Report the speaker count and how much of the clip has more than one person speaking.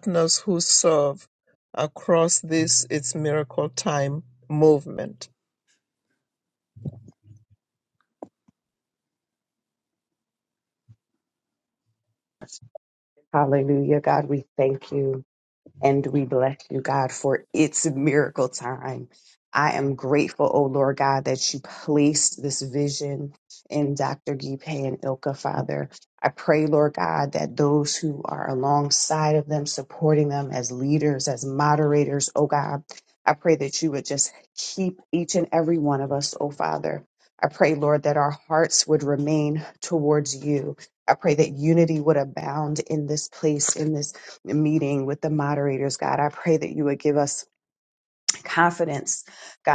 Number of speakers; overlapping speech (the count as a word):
two, no overlap